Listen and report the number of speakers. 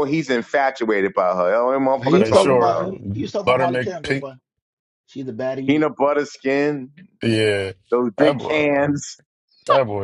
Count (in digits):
3